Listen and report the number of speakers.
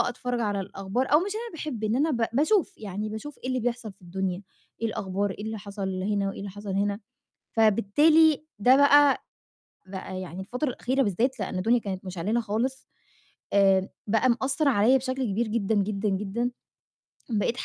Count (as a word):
one